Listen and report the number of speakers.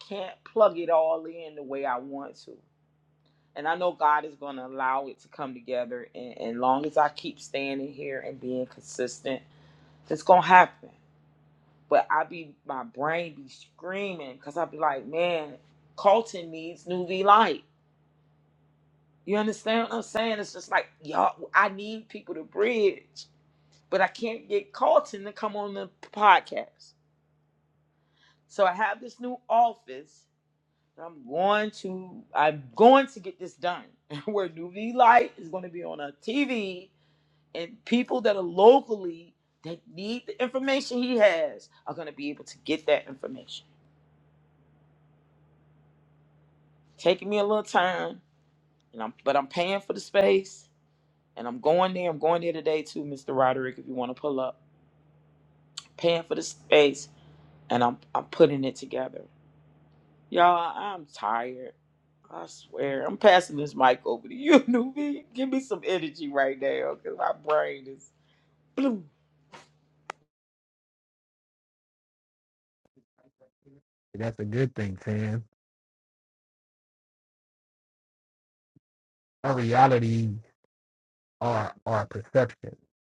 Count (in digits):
2